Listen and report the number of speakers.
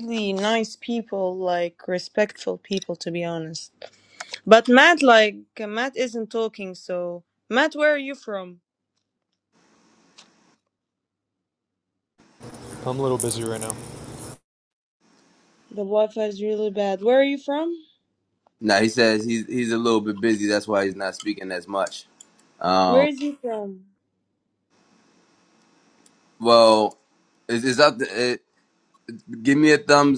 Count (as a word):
three